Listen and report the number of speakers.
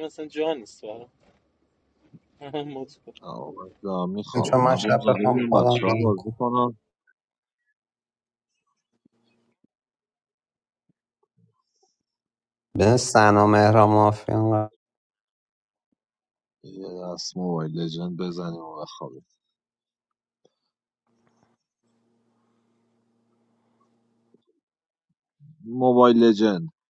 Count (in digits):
3